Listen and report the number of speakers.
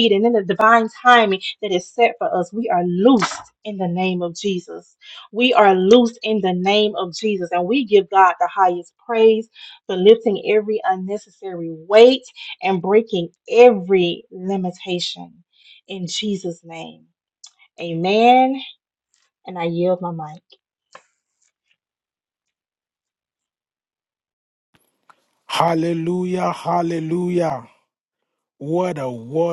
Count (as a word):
two